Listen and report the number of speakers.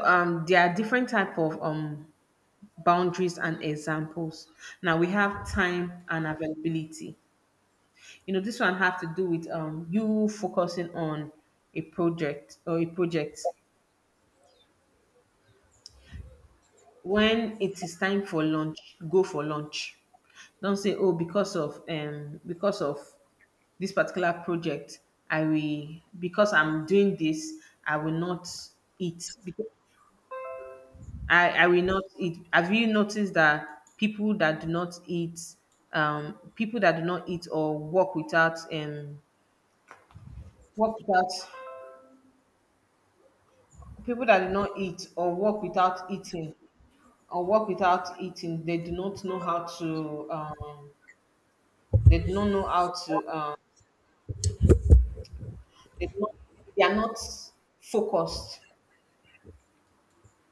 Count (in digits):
1